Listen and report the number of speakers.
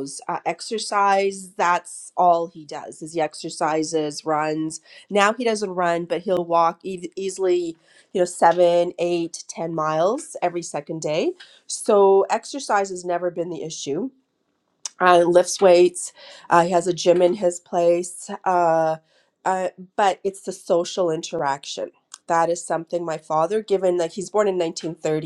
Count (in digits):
1